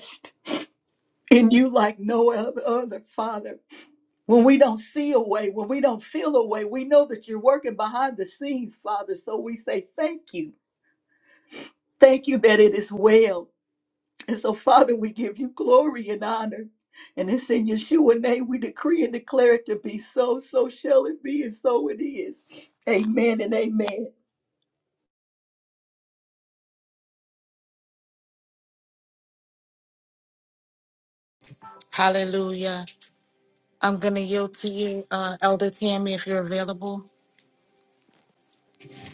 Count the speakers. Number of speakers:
two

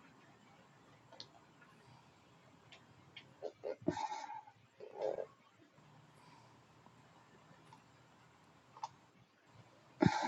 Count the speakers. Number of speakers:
zero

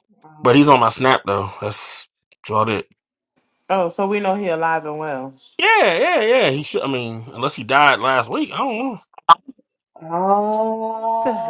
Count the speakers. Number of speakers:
three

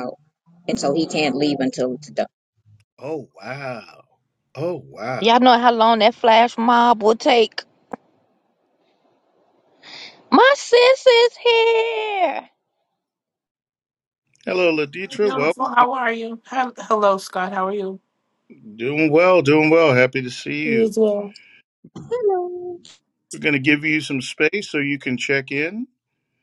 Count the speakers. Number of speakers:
four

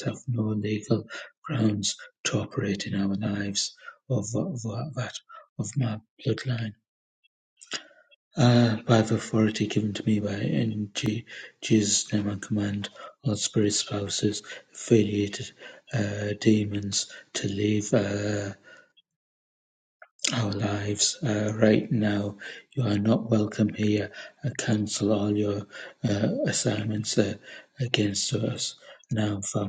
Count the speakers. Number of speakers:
one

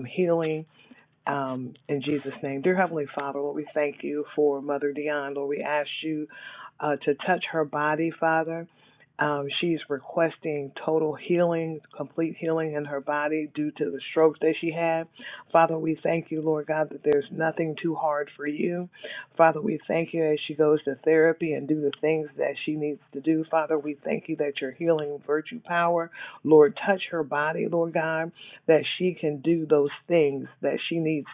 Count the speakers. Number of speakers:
one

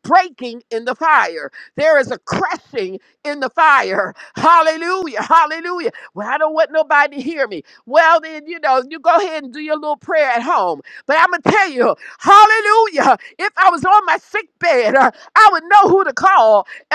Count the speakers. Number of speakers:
one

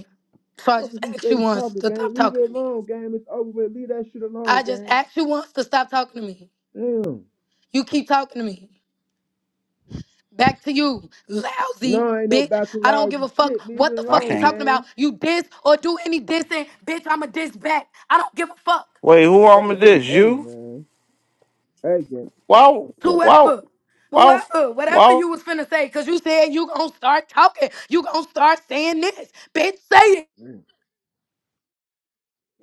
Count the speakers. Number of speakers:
three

